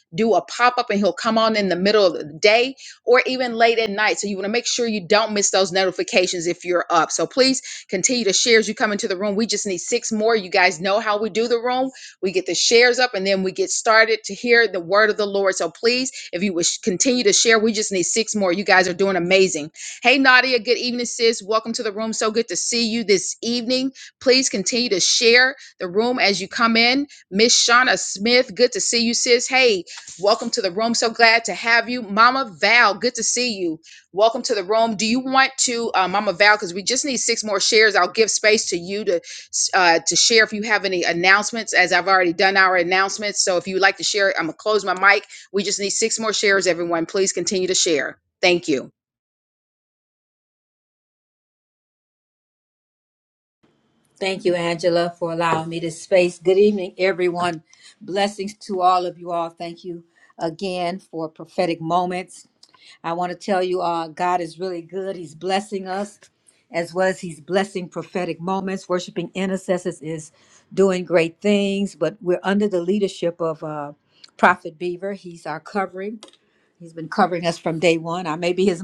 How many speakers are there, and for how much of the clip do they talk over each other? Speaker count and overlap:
two, no overlap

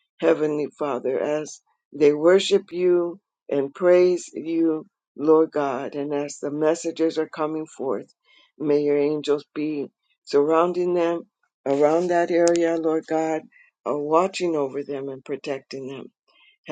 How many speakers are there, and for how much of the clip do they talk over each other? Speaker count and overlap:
one, no overlap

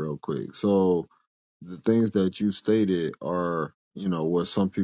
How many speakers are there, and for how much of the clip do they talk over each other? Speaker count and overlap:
one, no overlap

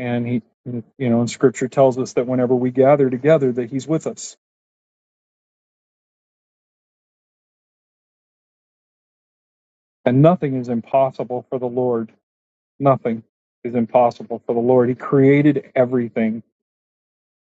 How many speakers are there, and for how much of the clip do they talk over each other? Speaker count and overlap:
one, no overlap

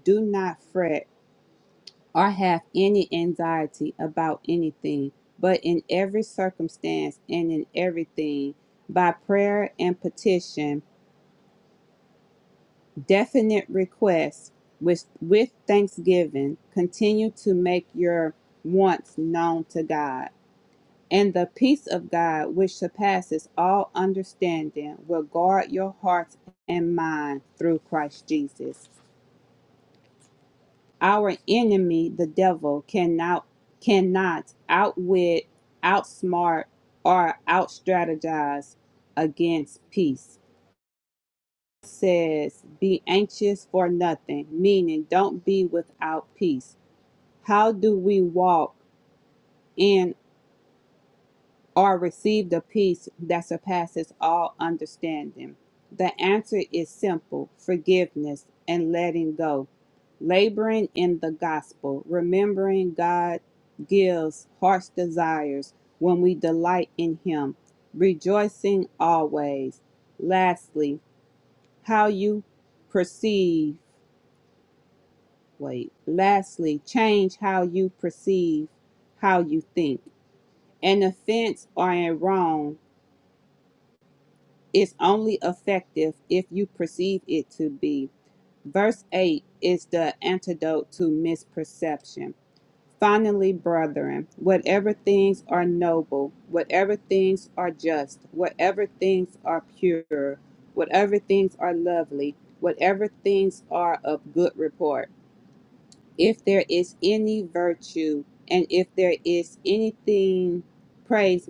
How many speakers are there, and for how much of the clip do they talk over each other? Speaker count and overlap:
one, no overlap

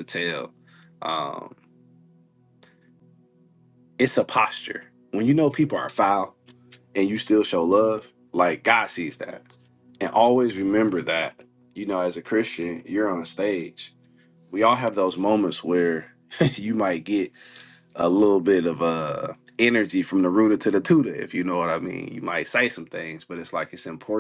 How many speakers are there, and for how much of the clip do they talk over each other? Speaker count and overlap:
one, no overlap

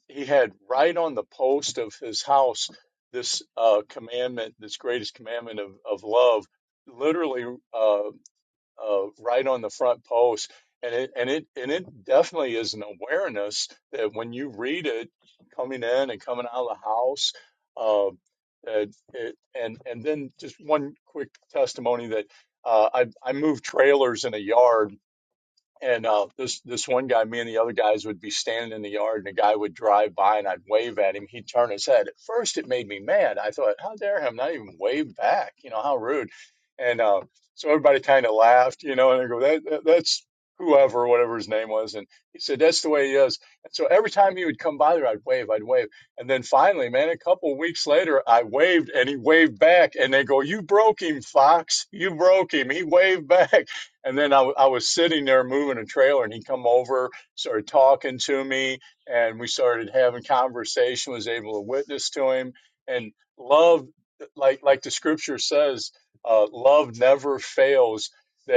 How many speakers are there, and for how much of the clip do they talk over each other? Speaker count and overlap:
one, no overlap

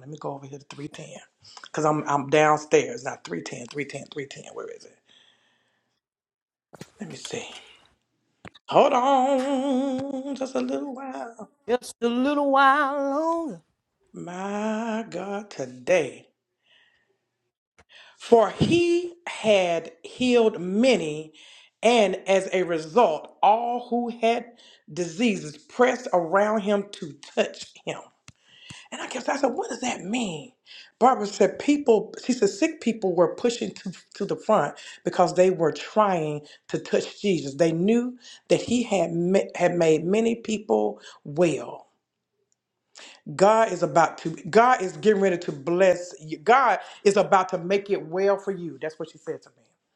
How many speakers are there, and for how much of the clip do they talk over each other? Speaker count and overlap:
two, no overlap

